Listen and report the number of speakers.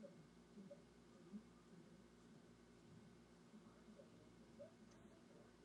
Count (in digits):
0